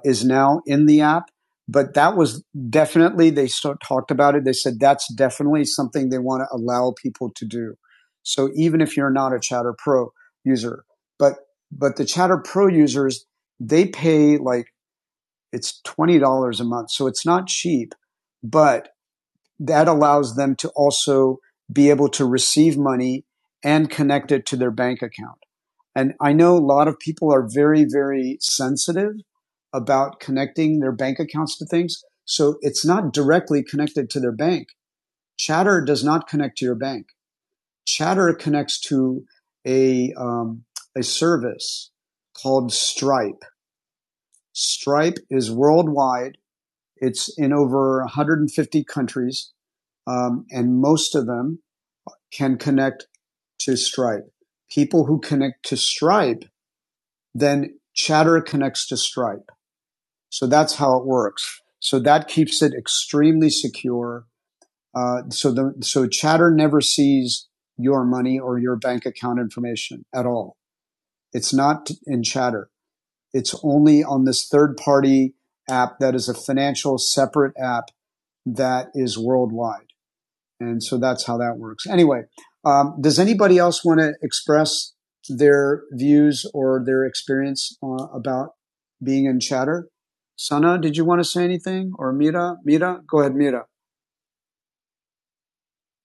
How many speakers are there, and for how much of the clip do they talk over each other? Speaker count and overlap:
1, no overlap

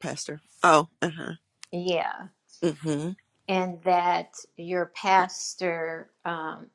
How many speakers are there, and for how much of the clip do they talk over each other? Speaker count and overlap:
2, no overlap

